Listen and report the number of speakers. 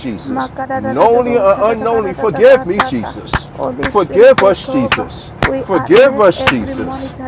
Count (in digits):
2